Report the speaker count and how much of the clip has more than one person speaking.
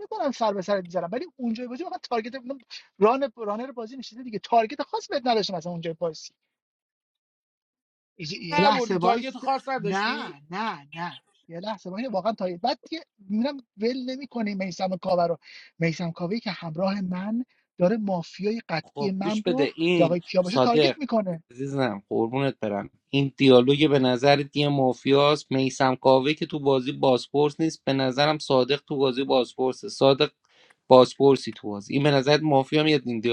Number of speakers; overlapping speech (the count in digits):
2, about 9%